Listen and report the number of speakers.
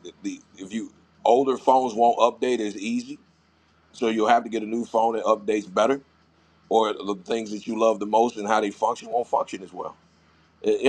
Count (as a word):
one